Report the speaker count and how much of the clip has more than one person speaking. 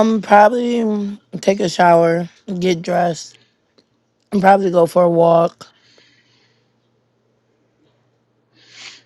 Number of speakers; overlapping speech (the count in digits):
1, no overlap